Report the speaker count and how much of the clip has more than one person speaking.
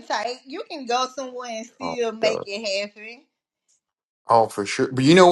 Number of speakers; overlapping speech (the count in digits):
2, about 12%